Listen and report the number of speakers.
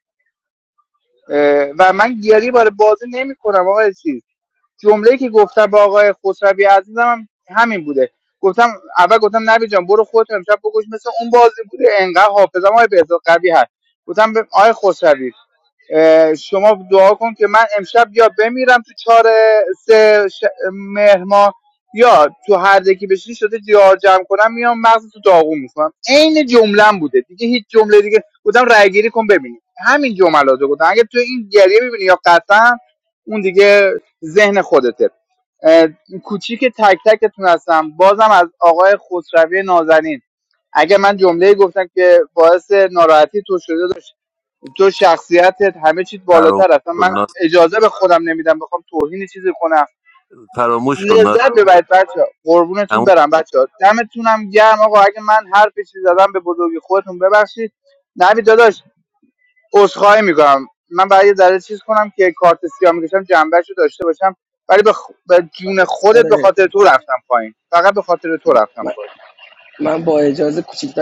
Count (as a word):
three